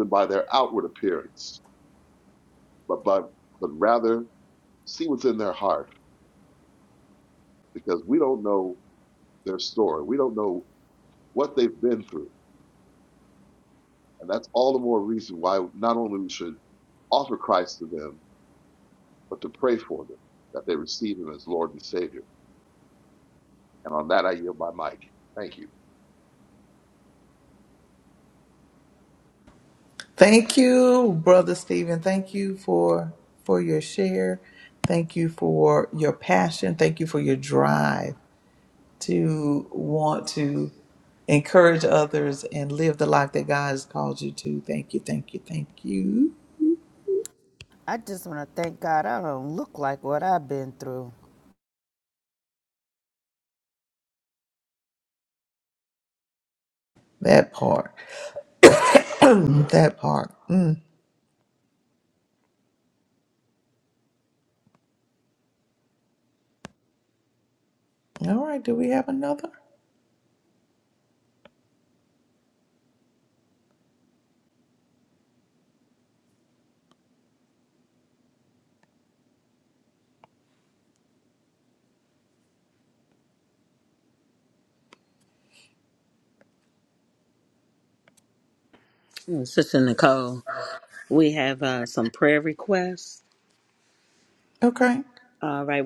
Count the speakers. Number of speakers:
four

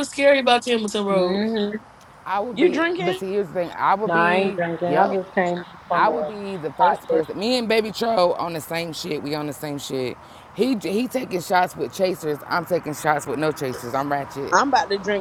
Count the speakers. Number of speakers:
four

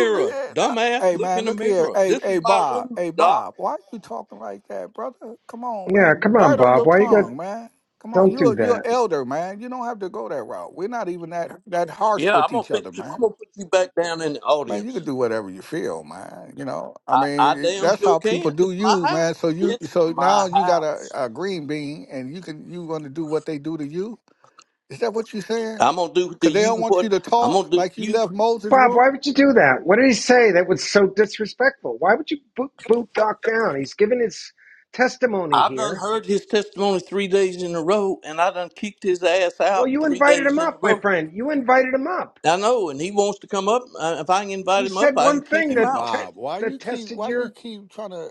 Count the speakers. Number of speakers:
three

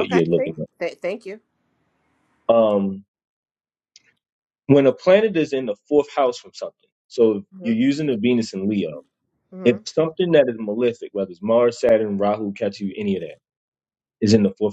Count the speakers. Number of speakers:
two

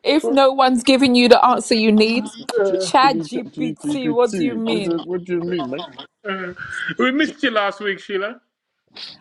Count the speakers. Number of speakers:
three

